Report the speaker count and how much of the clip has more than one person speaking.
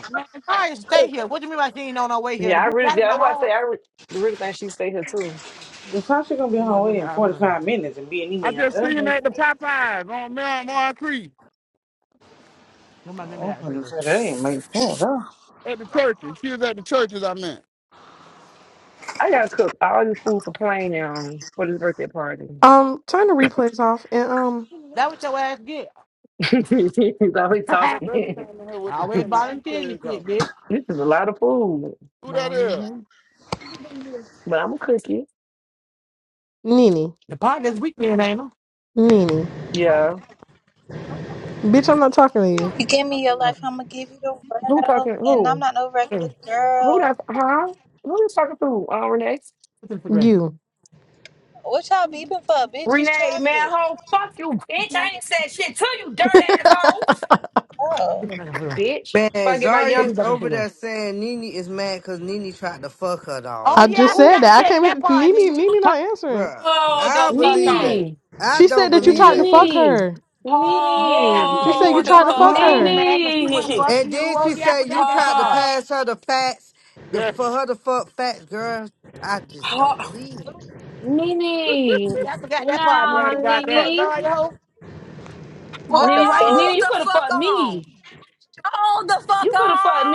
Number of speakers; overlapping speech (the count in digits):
8, about 29%